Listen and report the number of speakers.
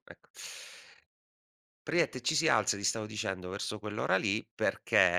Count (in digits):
1